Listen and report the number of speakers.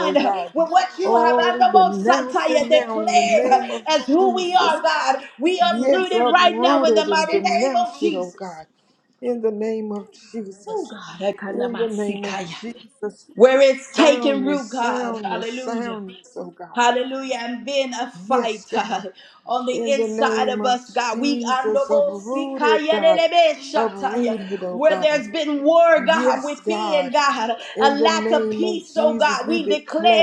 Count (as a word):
two